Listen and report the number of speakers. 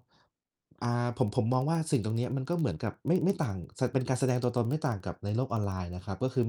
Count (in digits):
1